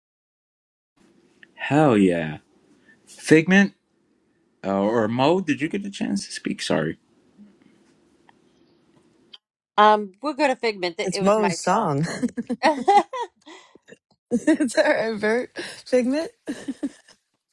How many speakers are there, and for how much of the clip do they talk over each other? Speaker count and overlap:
three, about 5%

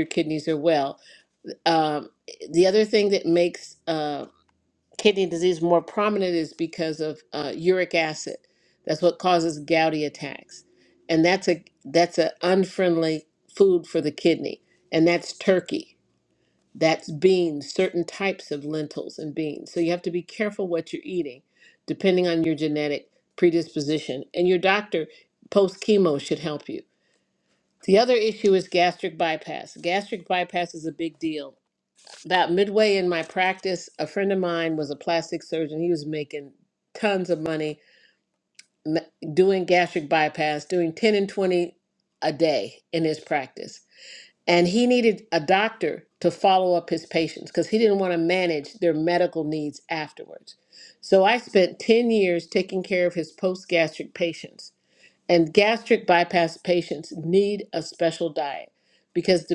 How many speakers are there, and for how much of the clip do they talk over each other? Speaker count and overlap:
one, no overlap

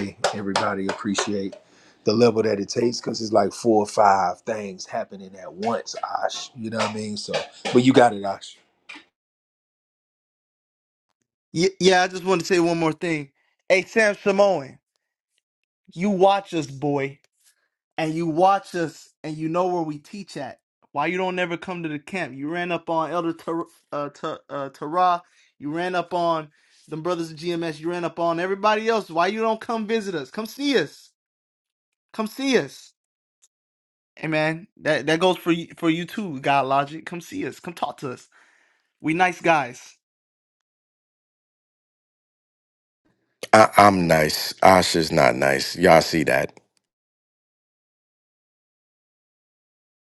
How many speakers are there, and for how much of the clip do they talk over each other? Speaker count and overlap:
three, no overlap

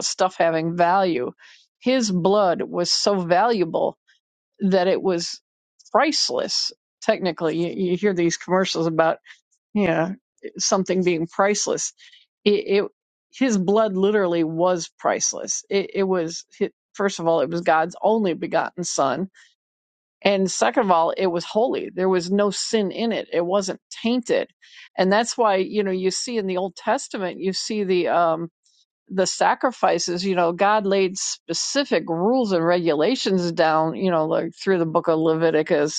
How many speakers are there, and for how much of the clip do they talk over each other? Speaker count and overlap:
one, no overlap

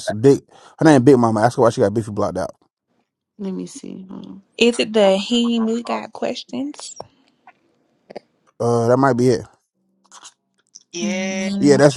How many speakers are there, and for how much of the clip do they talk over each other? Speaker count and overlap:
three, about 6%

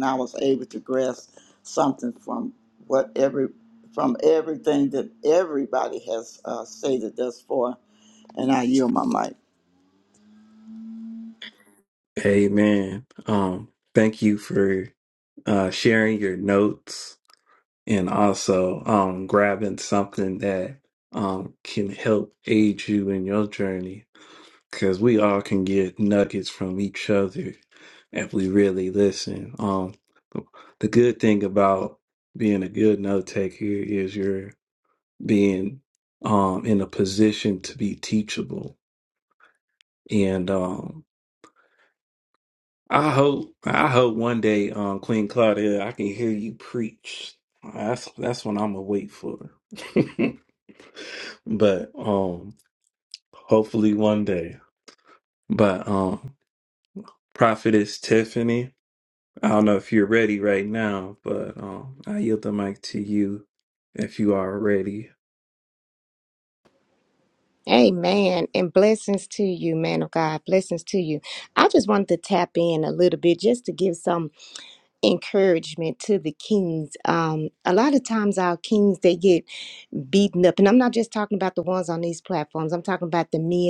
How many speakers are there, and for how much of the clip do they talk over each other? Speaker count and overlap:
three, no overlap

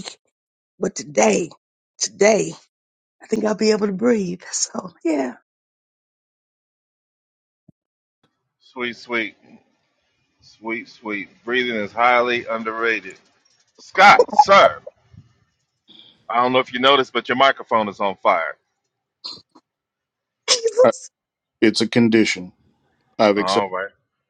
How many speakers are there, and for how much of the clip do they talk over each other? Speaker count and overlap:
three, about 1%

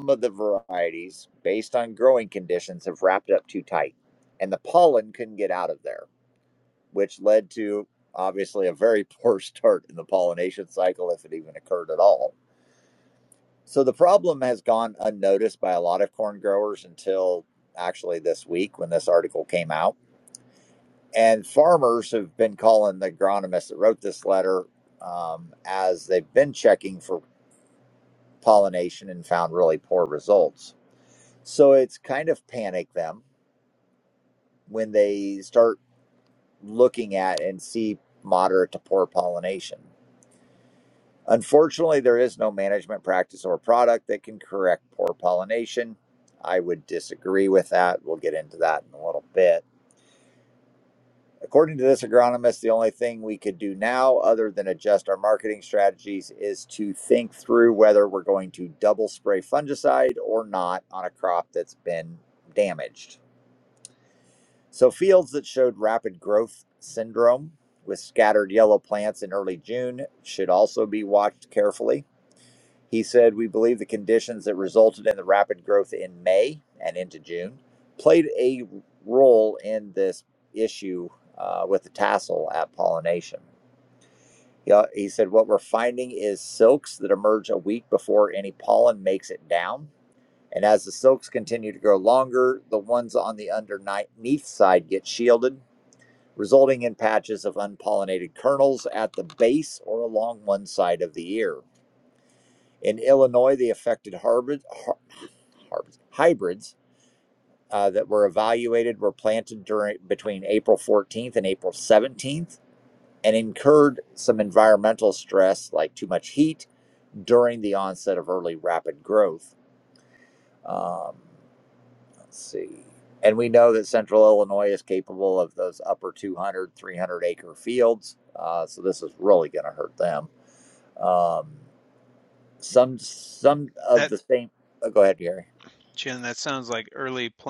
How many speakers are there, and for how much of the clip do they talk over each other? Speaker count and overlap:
two, under 1%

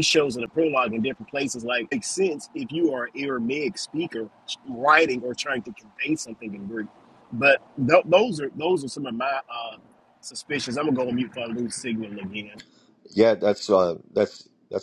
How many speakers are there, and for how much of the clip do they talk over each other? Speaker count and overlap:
two, no overlap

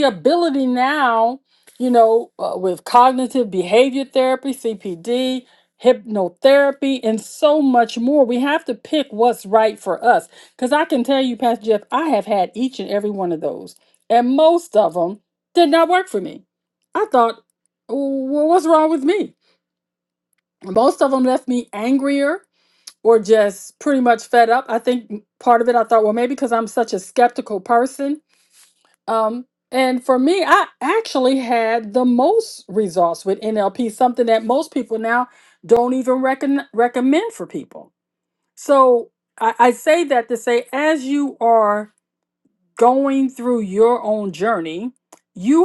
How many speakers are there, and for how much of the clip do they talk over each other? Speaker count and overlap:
one, no overlap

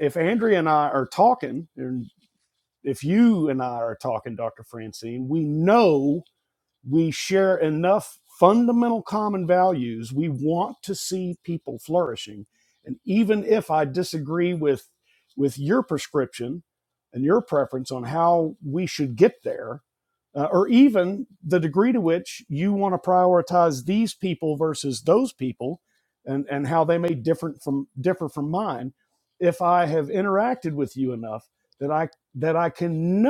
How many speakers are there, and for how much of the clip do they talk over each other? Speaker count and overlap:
one, no overlap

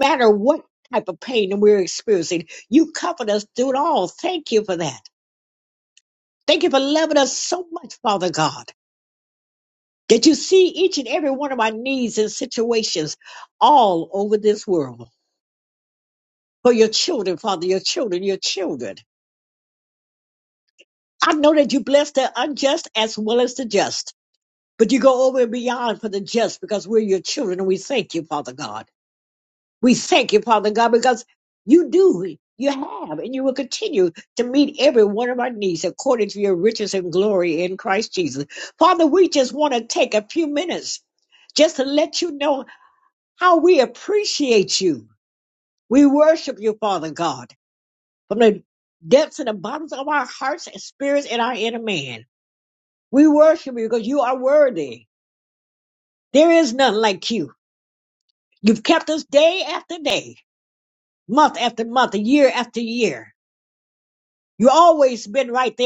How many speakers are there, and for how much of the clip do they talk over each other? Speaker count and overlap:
one, no overlap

